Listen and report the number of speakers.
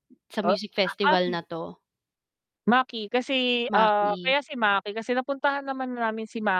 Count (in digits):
2